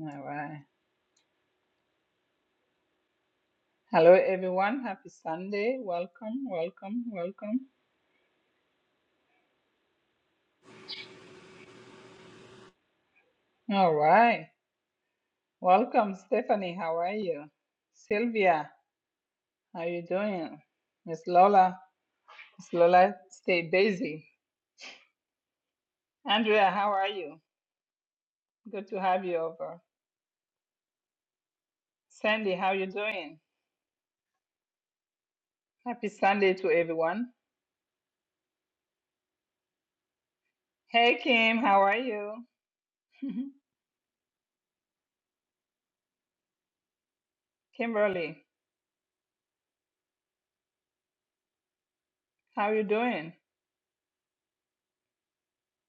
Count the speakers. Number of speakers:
1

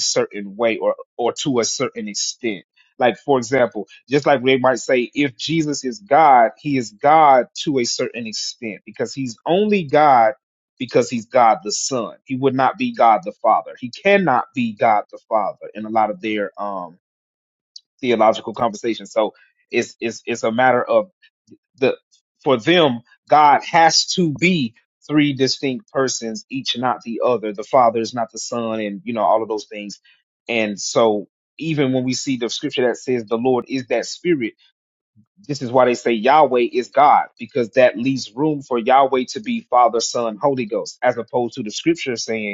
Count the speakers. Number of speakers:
1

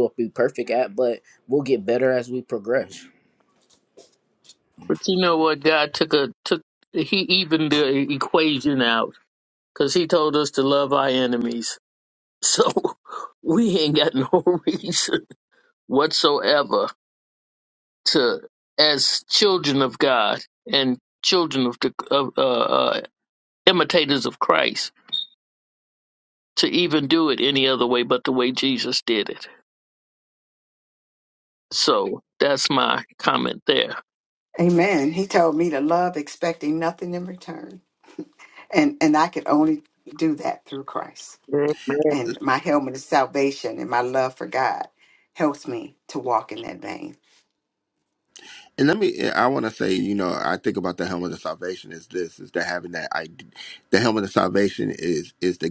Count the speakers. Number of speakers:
4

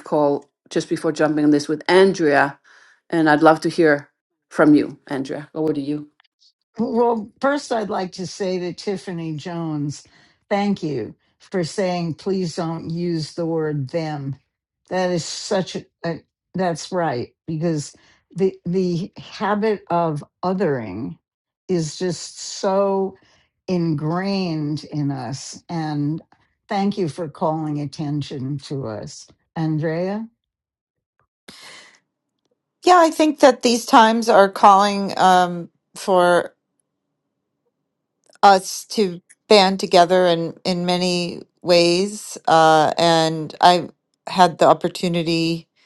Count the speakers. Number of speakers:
3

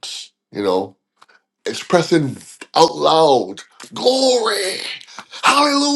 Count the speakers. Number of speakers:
1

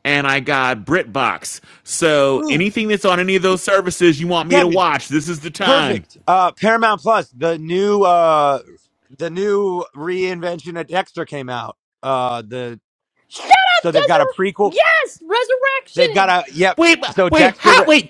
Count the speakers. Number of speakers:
3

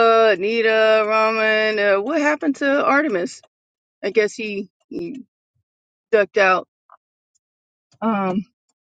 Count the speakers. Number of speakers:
1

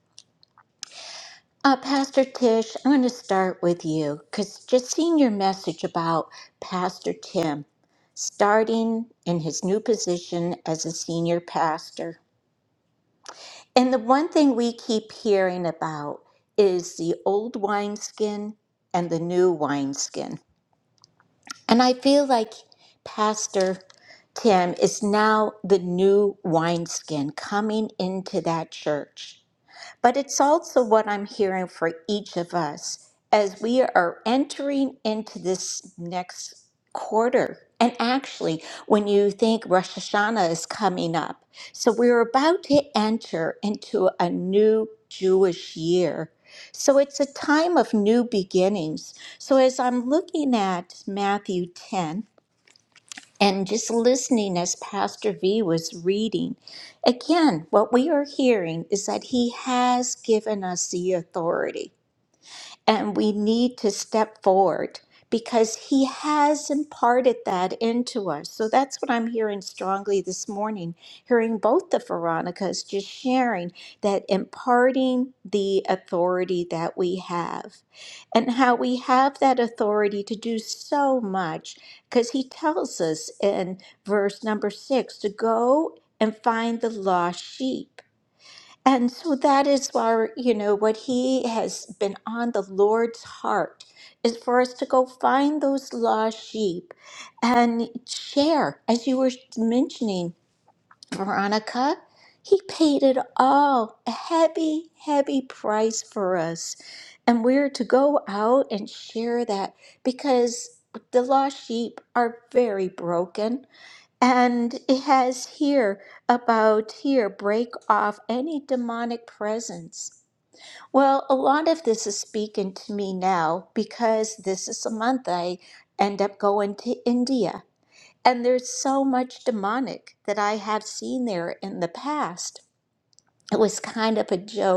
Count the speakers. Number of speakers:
1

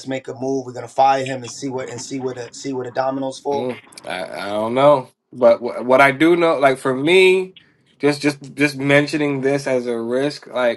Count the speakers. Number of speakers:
2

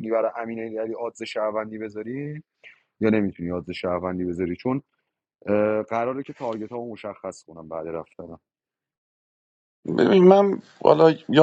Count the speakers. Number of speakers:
2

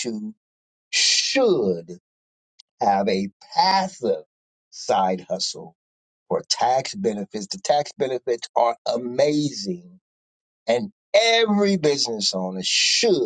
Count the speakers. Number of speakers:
1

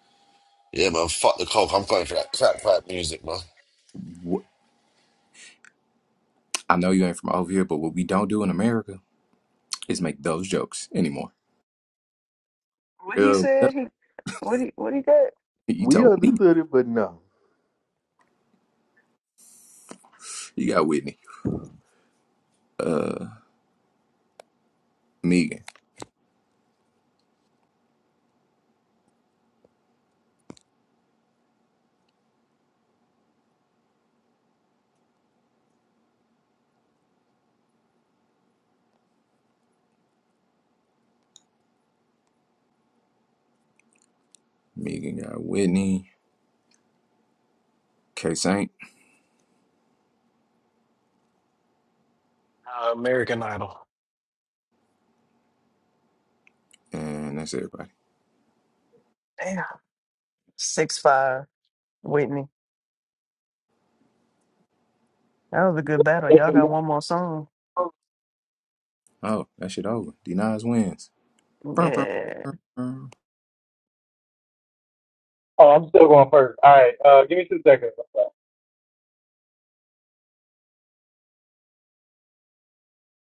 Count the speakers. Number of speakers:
6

